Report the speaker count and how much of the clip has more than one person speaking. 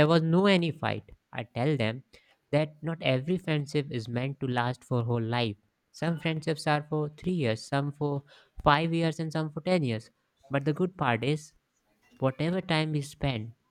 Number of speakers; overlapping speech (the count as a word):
one, no overlap